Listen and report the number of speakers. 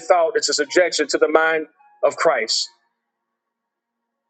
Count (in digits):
1